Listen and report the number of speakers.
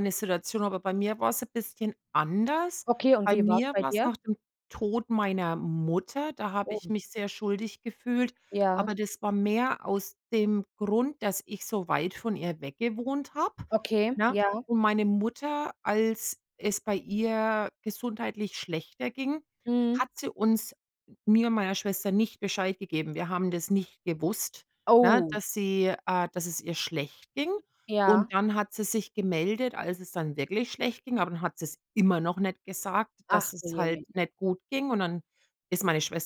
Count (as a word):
two